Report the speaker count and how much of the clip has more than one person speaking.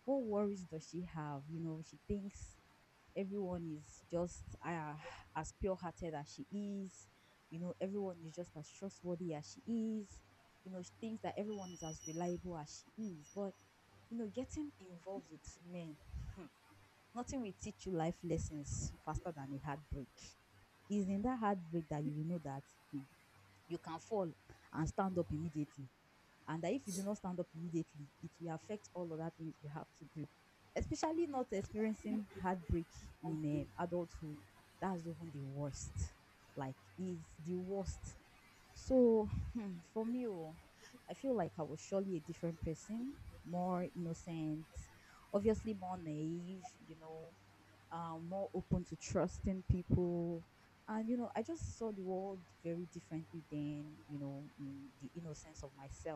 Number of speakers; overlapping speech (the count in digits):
1, no overlap